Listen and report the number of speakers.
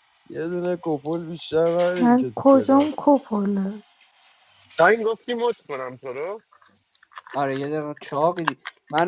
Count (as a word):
four